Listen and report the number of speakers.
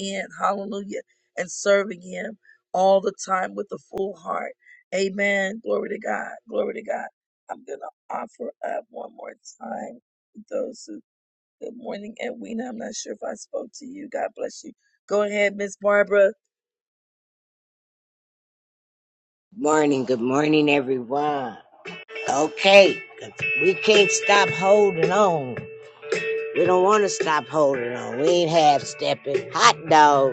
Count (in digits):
2